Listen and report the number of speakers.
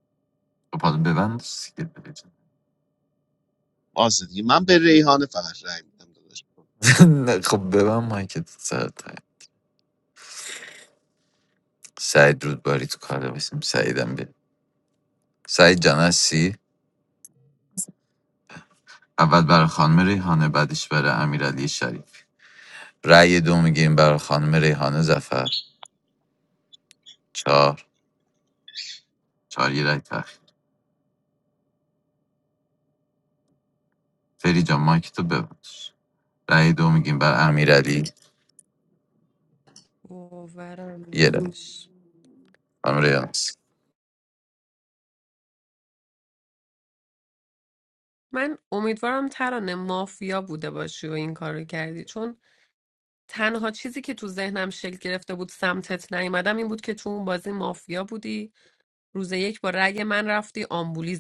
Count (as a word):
three